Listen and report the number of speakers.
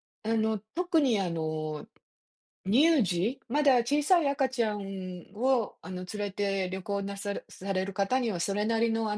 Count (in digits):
1